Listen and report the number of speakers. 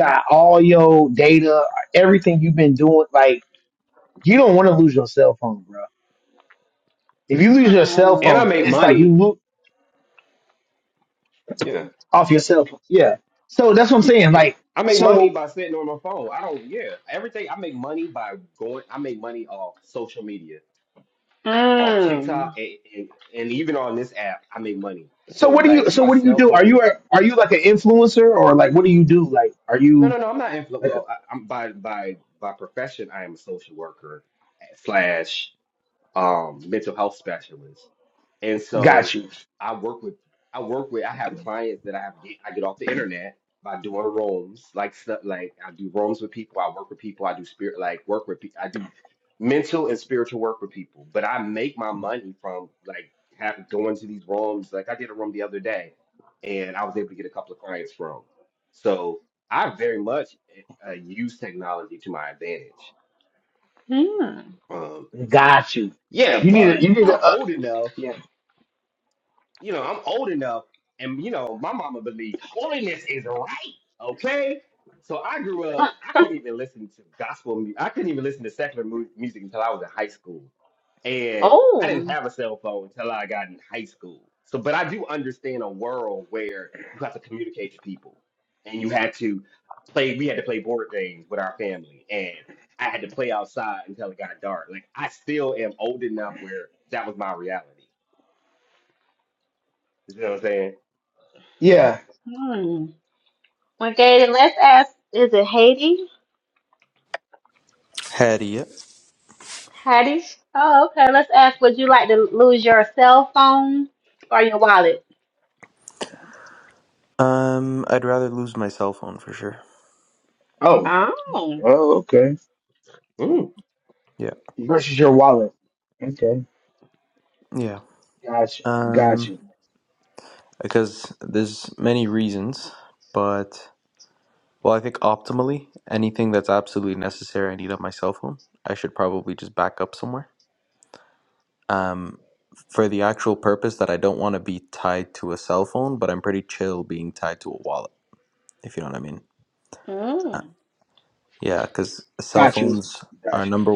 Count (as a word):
four